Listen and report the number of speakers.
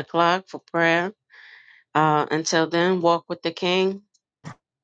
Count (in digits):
1